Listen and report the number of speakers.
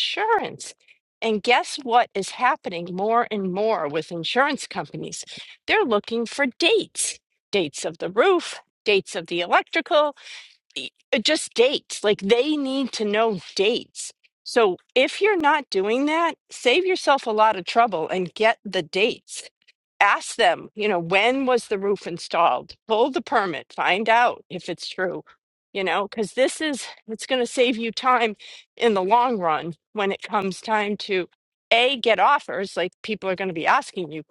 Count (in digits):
1